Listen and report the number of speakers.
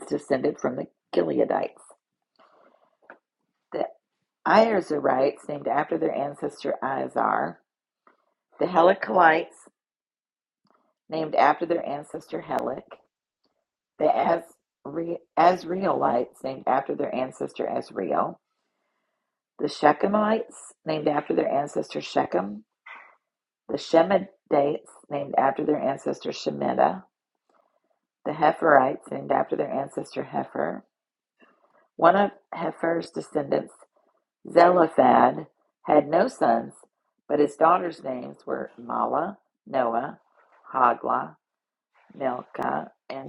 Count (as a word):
one